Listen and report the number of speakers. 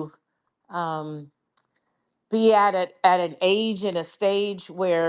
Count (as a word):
one